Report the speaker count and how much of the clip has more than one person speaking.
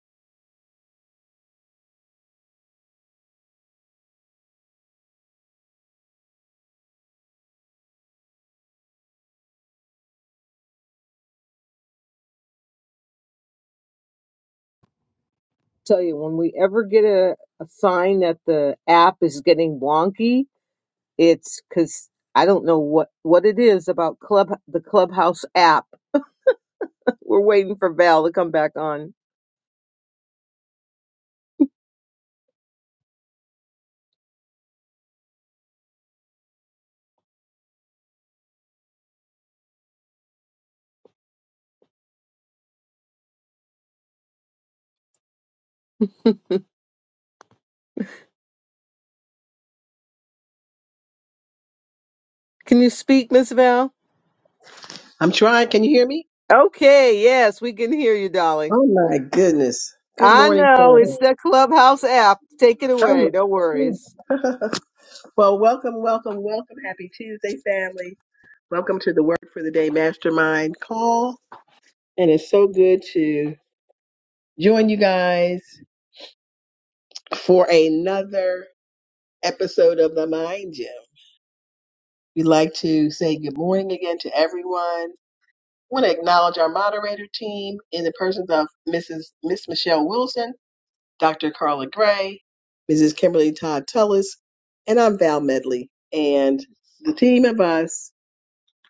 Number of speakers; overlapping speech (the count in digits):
2, about 2%